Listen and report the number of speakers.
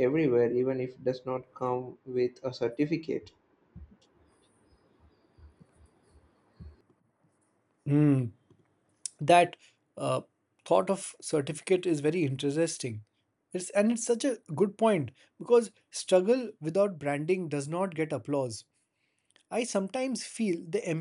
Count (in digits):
2